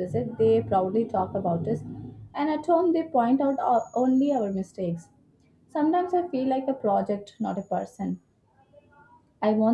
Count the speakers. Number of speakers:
one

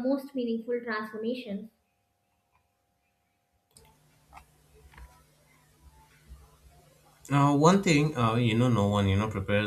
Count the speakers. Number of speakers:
two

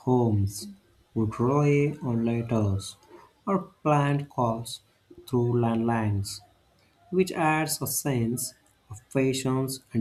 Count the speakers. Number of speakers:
one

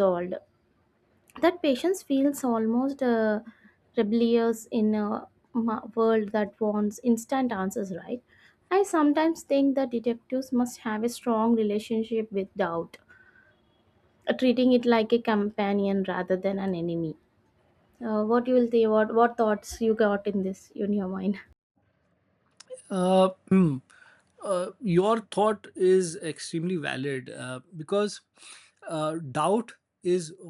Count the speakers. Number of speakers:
two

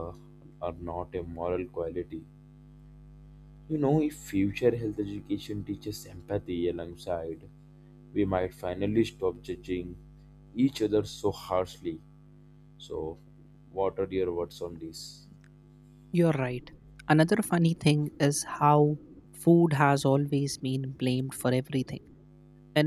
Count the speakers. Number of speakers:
two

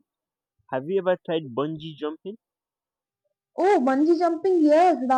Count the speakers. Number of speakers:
two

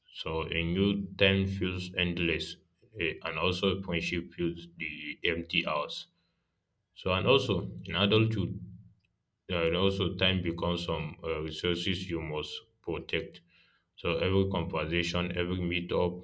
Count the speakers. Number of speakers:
one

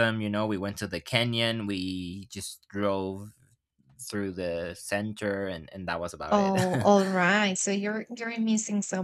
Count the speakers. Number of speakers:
two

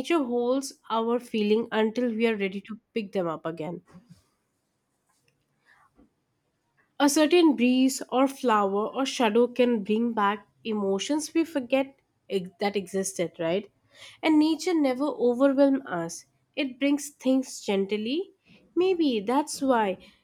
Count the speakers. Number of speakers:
one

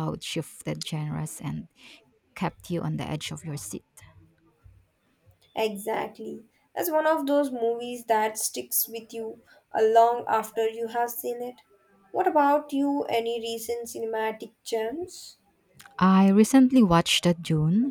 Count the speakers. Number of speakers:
two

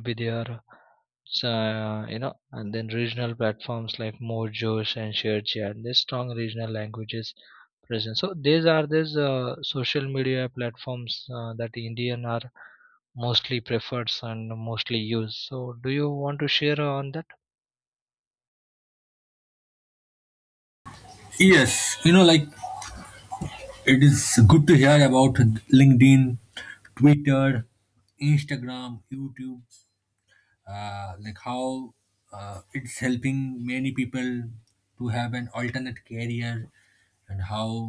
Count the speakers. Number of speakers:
two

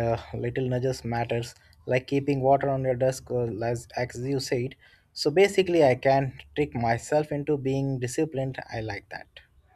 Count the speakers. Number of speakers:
one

